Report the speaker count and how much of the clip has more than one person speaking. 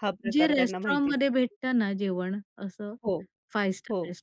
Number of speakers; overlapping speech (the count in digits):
2, about 25%